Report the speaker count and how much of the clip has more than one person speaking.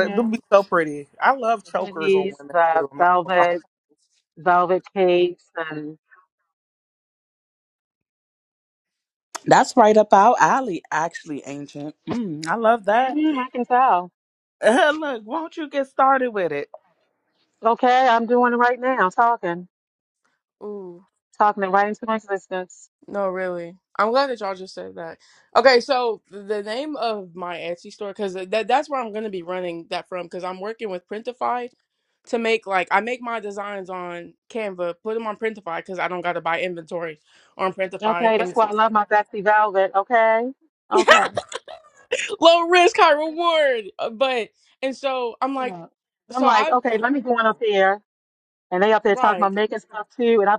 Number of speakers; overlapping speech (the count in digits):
4, about 8%